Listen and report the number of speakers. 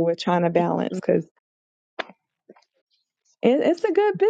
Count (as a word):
one